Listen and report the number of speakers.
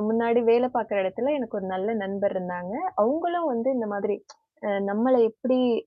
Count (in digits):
1